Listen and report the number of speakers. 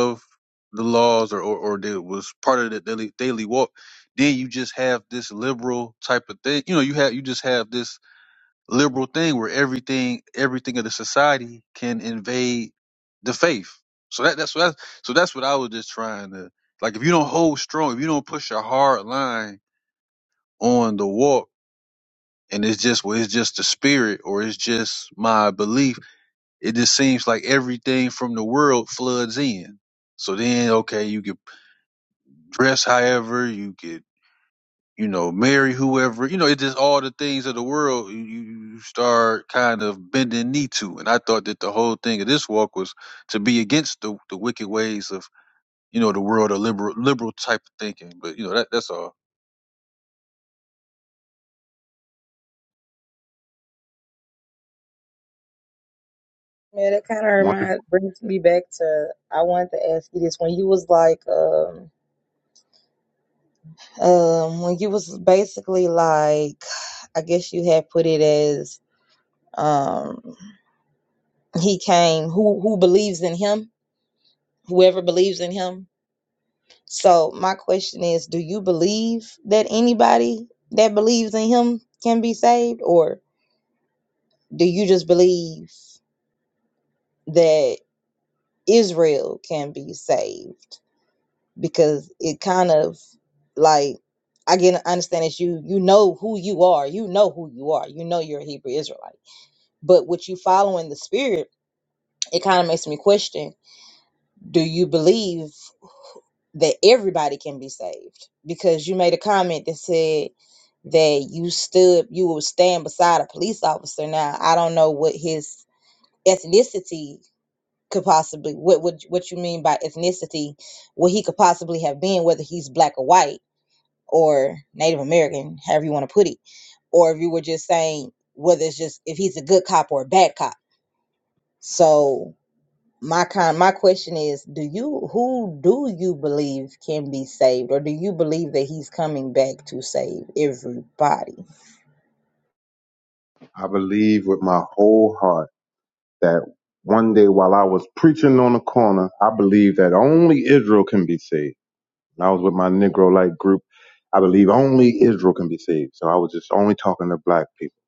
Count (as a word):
three